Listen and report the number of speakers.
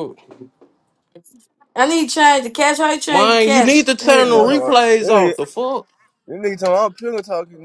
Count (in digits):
3